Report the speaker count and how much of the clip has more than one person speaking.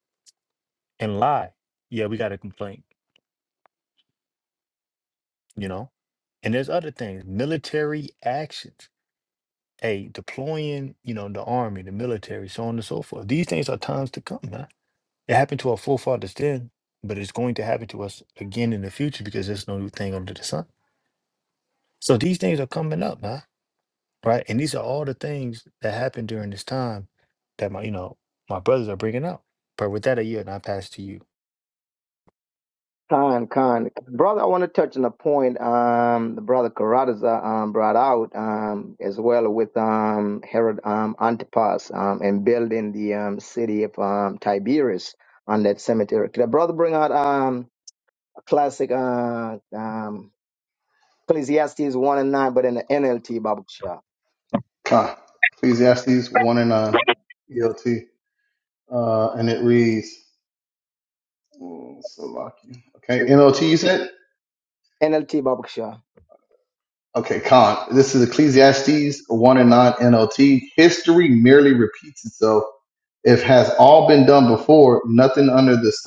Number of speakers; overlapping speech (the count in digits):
3, no overlap